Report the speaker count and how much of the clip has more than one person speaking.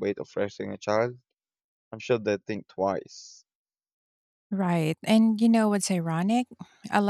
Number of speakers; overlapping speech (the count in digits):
2, no overlap